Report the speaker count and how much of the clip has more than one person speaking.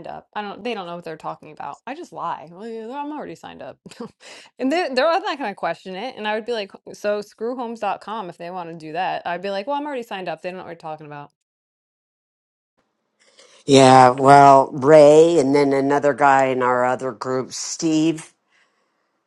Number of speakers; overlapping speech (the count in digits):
2, no overlap